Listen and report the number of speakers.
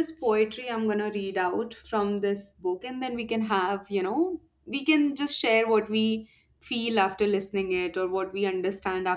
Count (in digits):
1